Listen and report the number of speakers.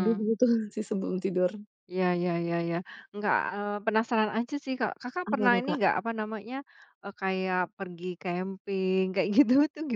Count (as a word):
two